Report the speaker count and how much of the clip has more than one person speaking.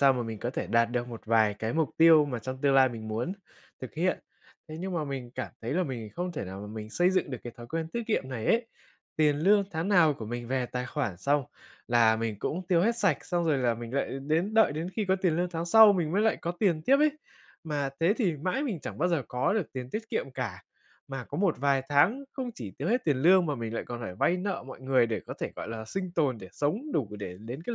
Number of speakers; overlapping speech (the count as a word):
one, no overlap